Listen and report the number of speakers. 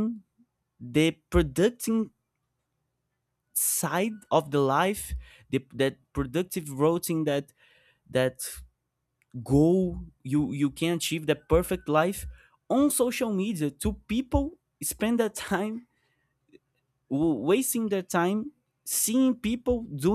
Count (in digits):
1